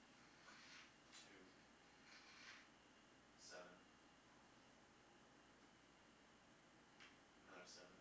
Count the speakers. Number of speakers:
1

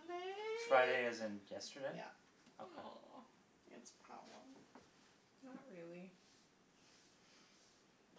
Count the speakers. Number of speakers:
3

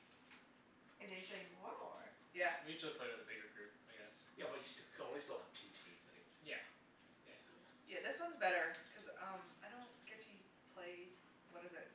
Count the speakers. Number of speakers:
4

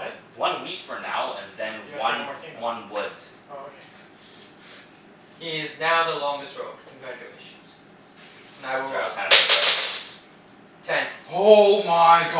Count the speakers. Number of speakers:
4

